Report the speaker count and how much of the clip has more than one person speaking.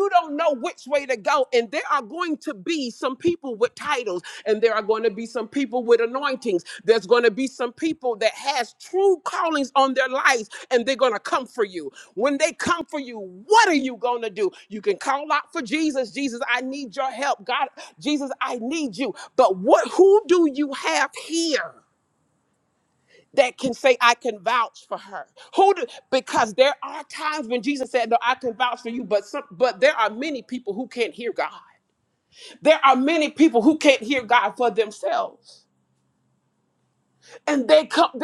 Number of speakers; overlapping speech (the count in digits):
1, no overlap